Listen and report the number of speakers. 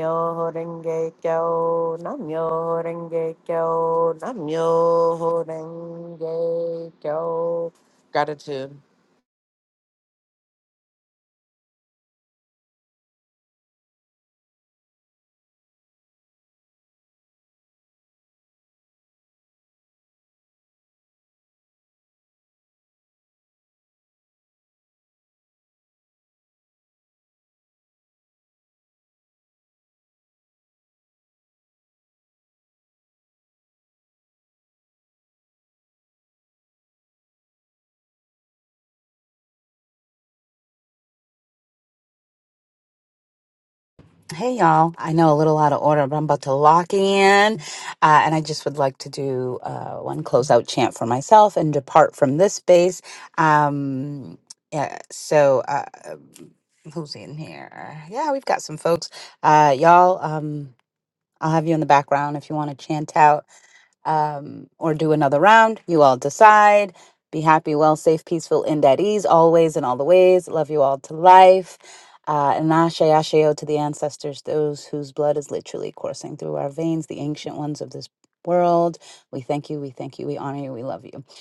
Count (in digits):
2